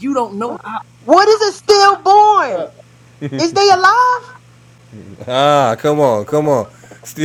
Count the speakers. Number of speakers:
3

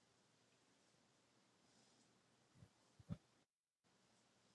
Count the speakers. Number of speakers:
0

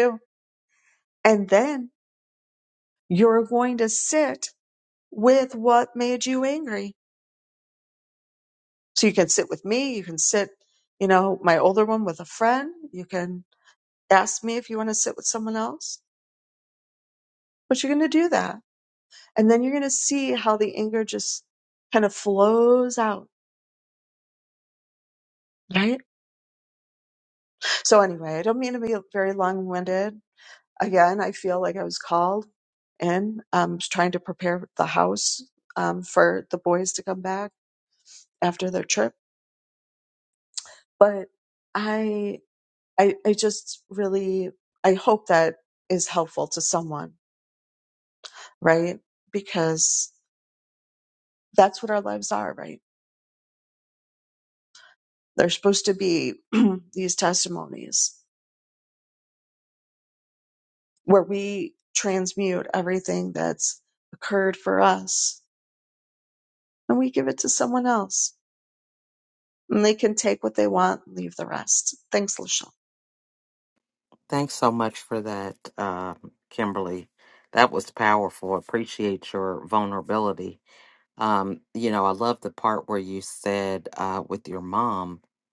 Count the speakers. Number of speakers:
2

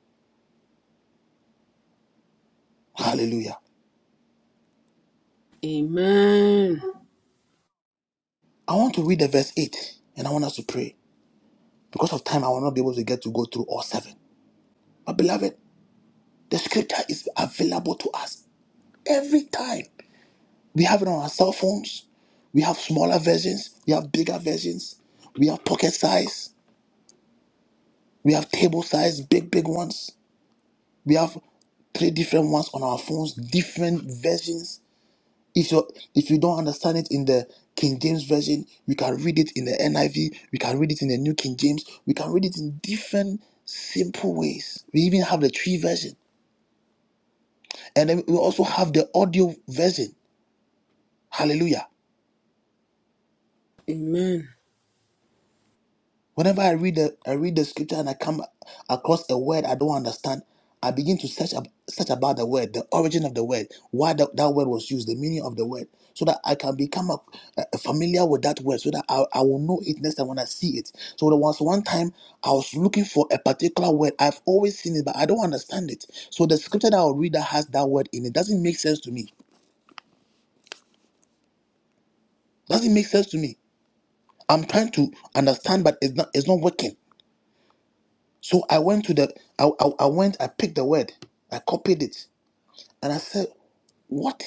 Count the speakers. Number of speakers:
2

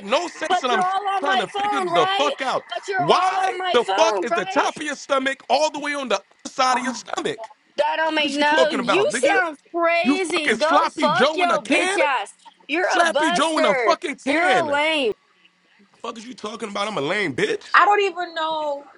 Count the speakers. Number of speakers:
3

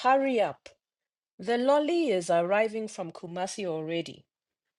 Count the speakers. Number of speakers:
1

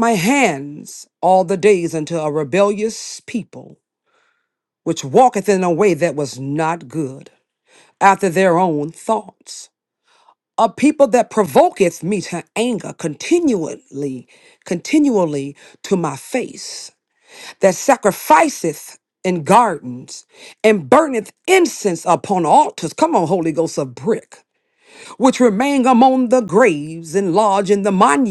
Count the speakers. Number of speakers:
1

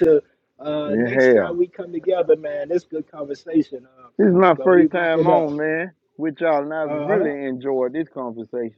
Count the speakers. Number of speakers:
2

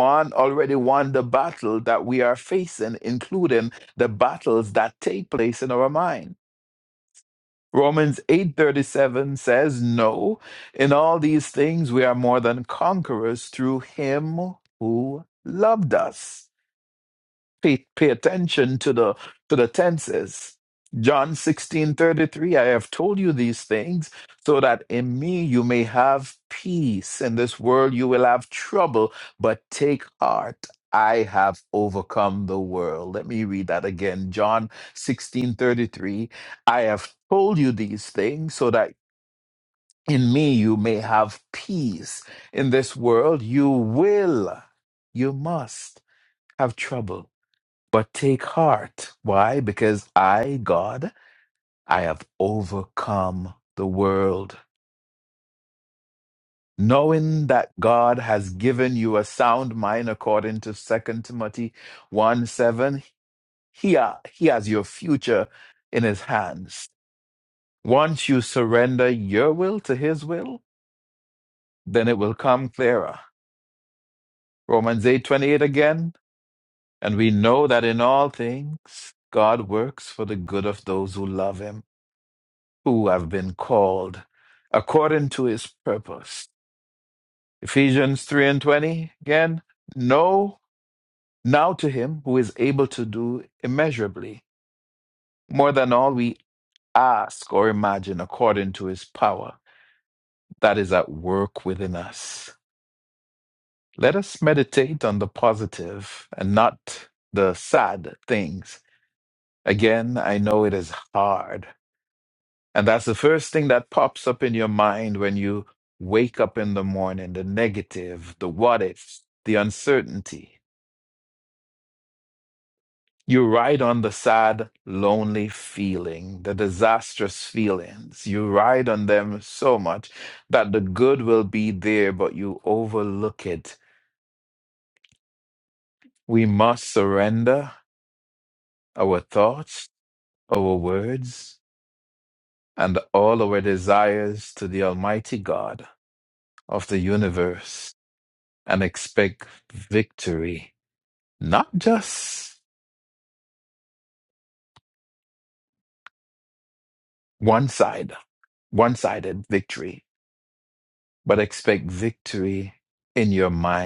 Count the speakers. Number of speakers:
1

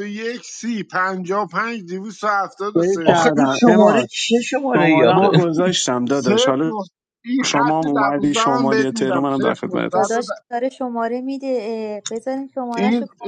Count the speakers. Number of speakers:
4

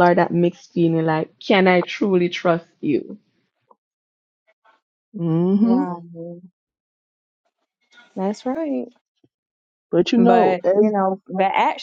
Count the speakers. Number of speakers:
3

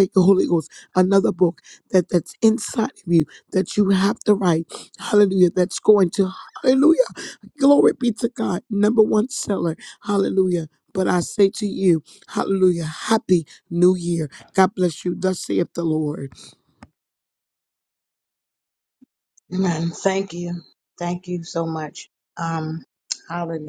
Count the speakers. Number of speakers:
2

